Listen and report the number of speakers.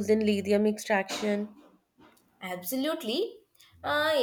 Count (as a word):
two